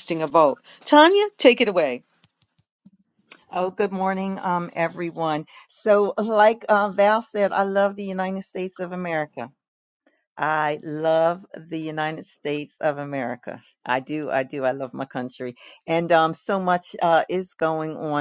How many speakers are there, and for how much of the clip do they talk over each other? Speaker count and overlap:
2, no overlap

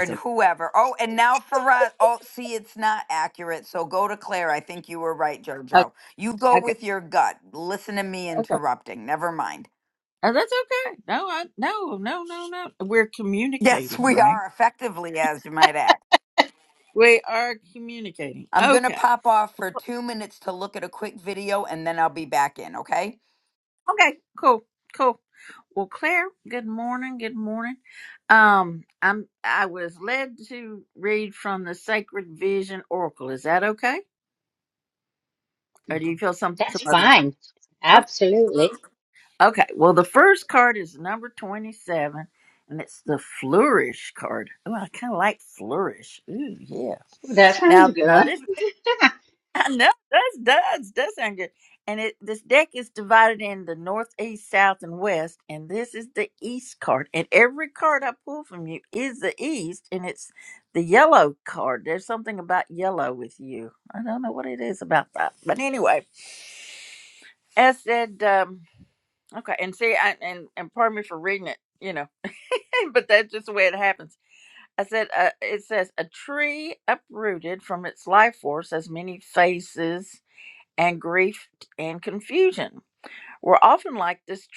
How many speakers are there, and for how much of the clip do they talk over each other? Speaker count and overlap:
3, about 4%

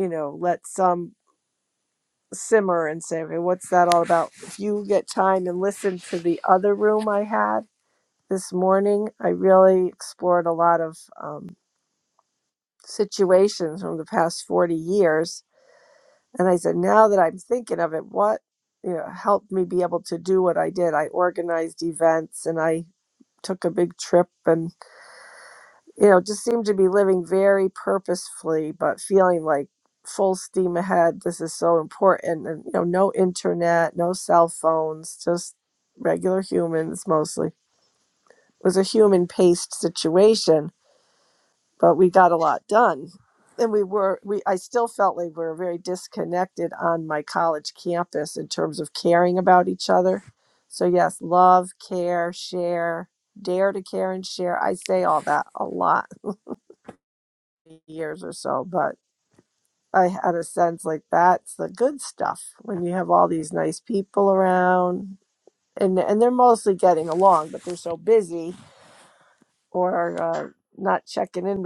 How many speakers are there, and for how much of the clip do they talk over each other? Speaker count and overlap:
1, no overlap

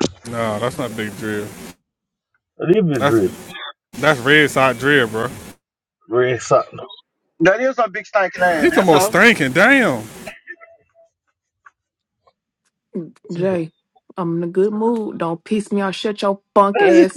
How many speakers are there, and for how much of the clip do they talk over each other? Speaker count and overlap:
4, about 7%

